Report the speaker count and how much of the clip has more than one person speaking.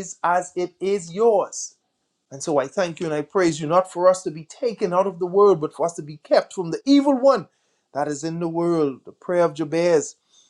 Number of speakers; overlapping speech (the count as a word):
one, no overlap